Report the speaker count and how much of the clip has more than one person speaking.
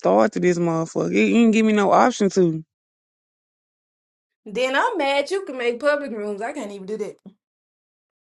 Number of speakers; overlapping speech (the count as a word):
two, no overlap